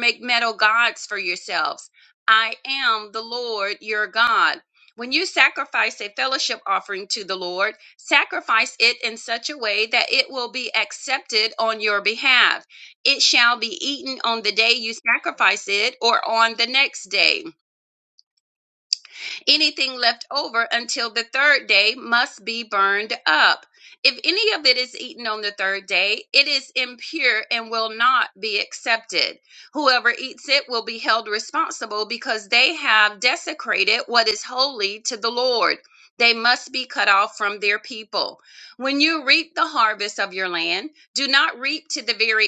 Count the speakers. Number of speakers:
1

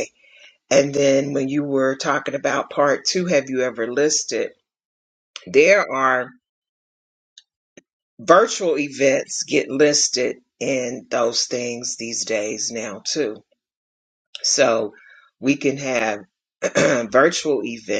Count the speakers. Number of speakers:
1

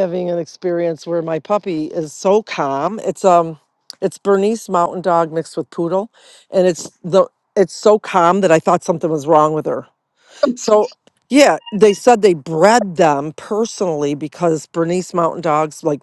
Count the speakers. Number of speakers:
1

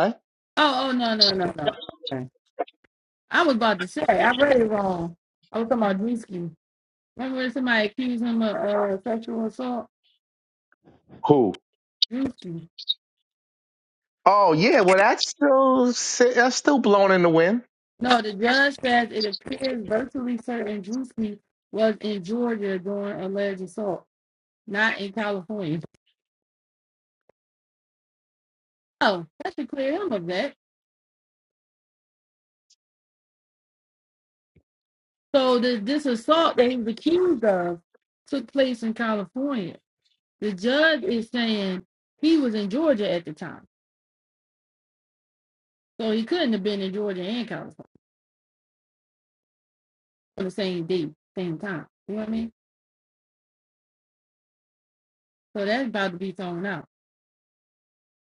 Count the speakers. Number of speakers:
2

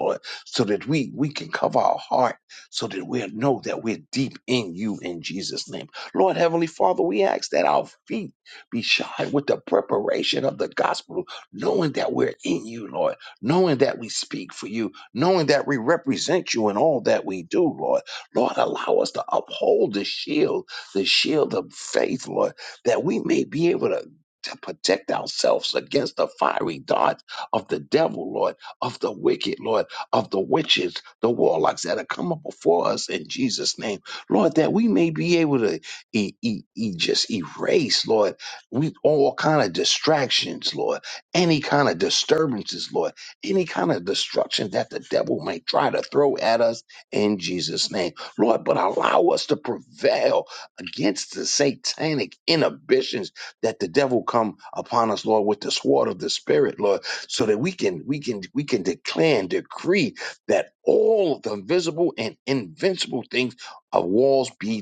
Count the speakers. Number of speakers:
1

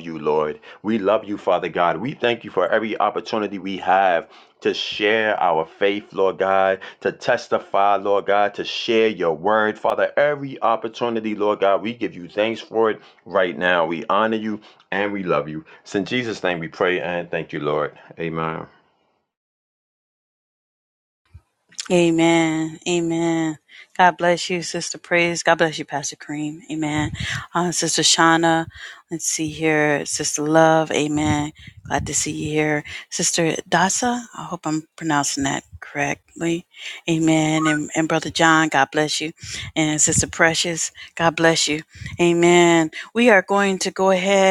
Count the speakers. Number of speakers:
2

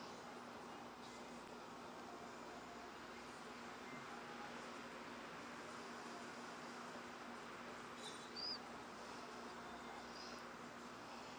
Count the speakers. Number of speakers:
0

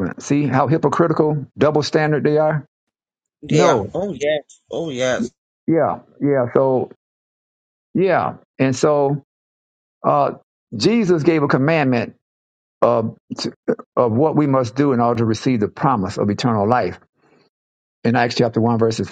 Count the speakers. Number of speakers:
2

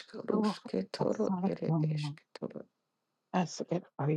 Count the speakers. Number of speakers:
2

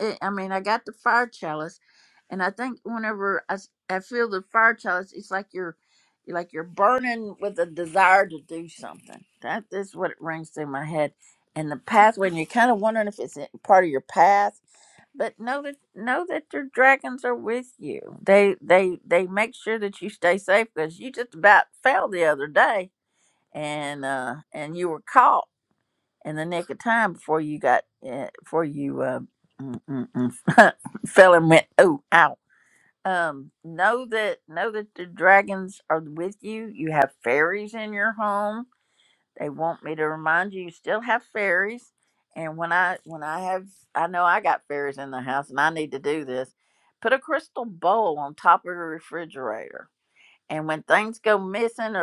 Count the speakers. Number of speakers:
1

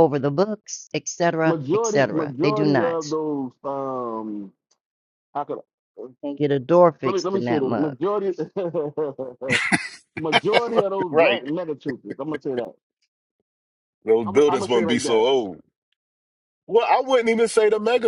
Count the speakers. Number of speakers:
3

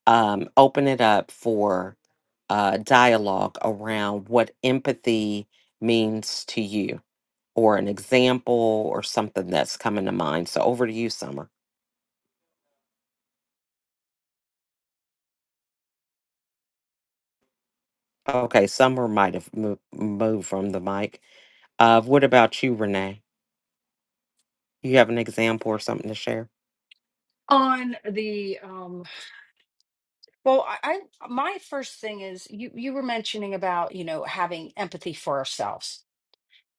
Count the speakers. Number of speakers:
2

